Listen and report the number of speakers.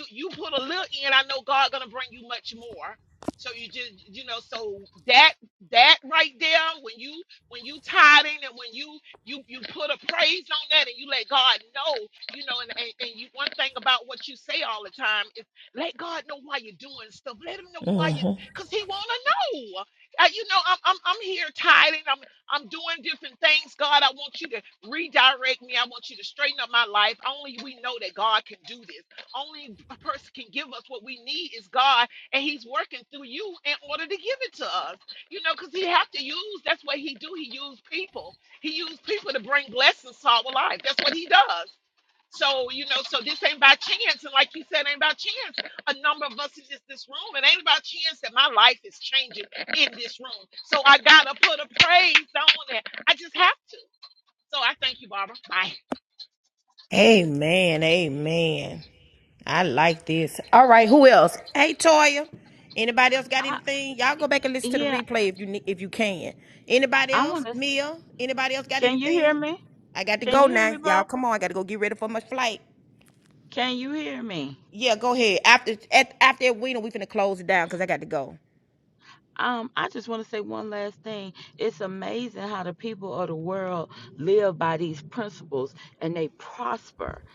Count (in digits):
3